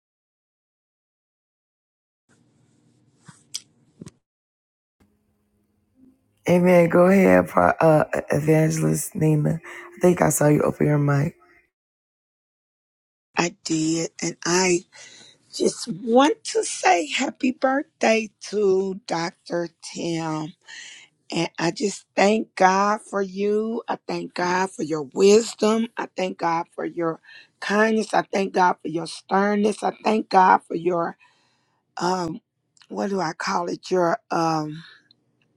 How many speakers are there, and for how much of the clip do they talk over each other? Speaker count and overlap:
2, no overlap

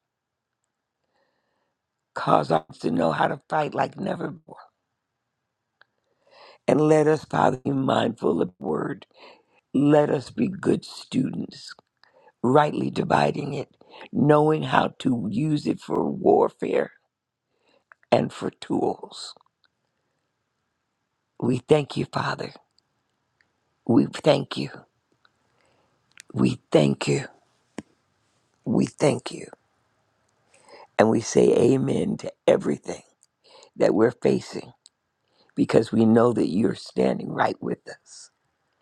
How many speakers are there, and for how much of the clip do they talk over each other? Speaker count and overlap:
1, no overlap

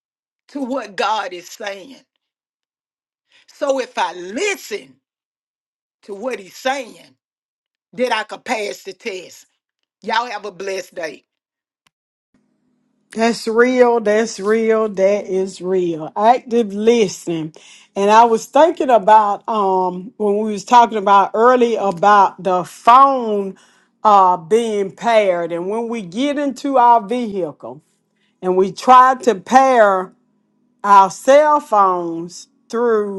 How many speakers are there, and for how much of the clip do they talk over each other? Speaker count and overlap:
2, no overlap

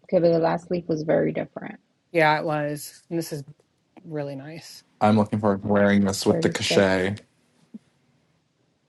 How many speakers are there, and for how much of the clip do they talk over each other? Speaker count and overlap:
3, about 6%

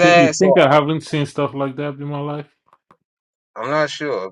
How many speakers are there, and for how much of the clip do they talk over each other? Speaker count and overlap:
2, about 15%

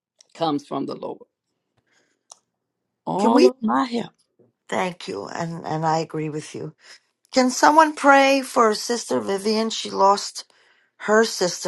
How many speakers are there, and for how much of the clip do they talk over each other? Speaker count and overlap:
2, about 3%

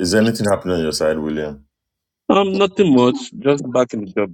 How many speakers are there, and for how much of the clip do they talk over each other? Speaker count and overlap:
2, no overlap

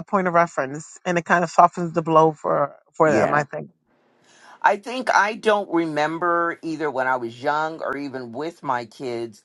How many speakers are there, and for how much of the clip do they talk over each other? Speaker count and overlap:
2, about 4%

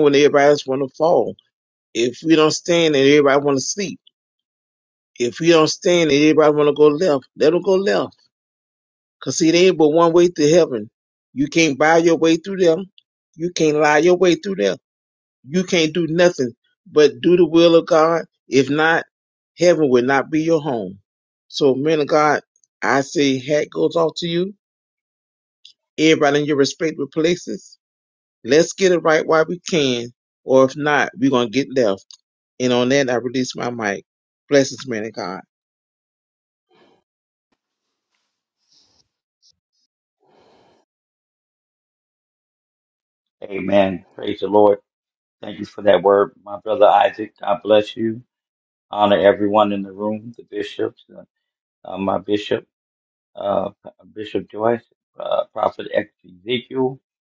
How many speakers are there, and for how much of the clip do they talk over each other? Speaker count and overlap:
2, no overlap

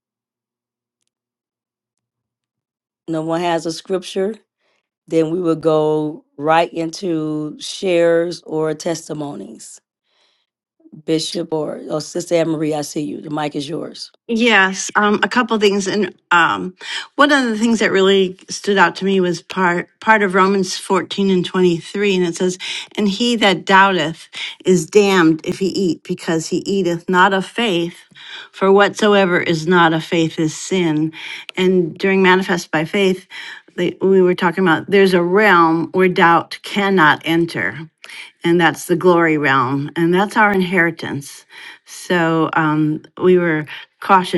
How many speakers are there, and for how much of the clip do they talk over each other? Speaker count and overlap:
2, no overlap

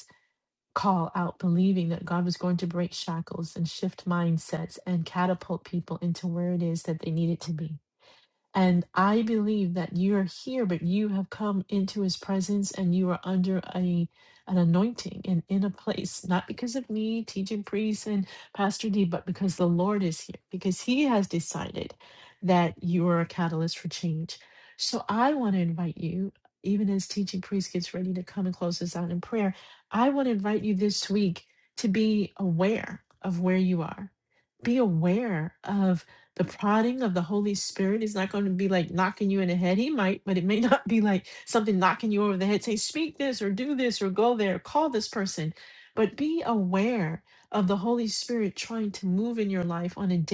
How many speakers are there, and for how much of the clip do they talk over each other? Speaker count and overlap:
1, no overlap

